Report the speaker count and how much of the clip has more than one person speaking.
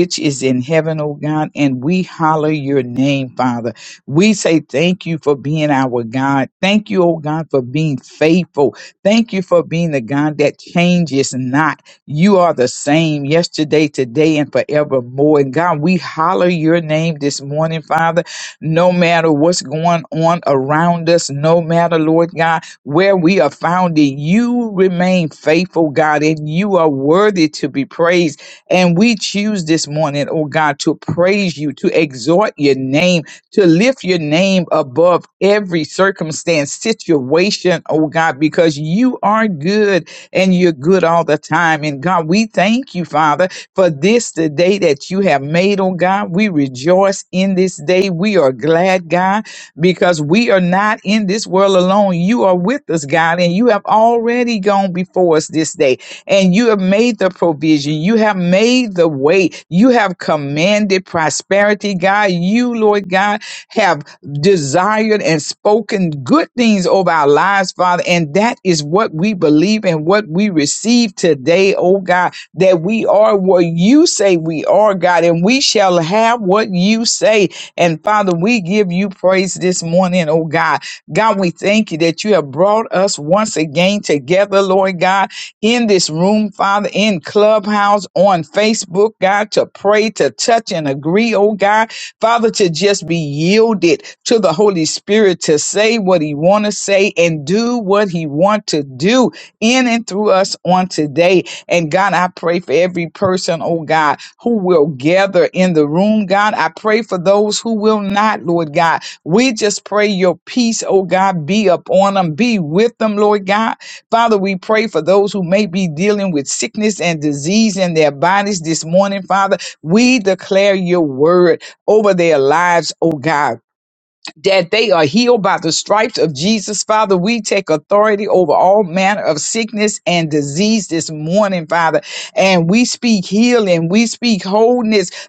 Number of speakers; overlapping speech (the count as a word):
one, no overlap